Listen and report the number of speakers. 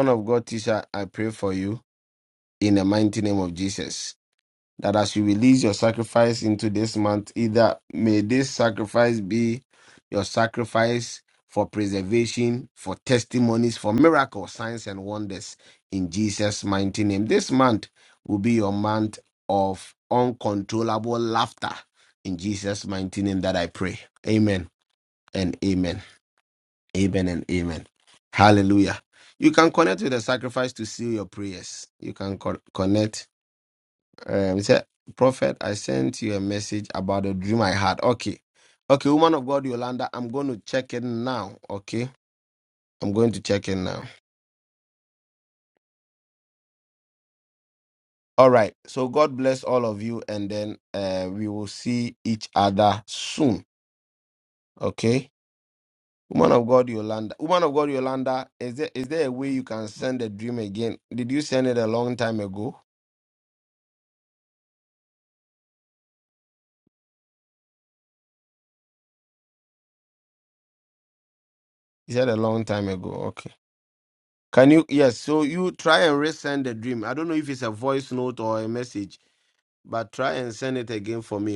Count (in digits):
1